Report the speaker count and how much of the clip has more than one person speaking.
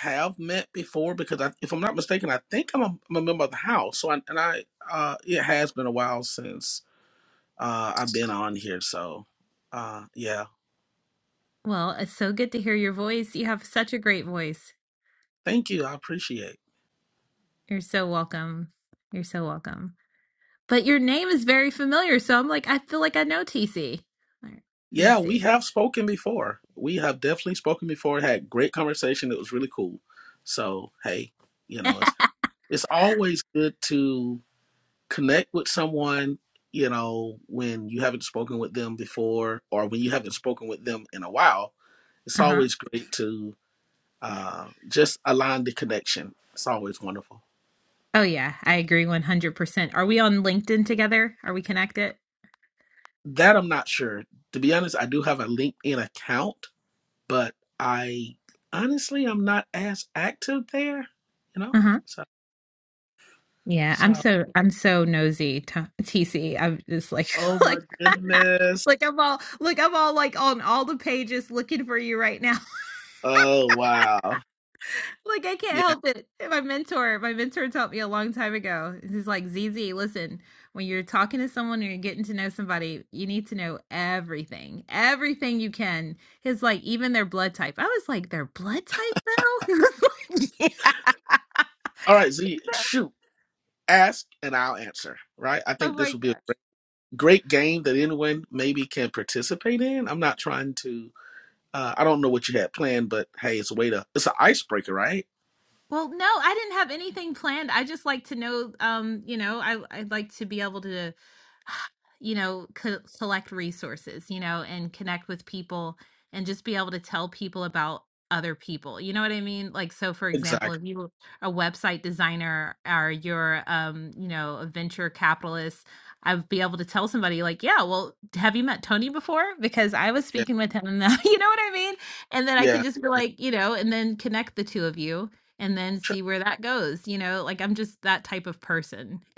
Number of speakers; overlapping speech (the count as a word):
two, about 3%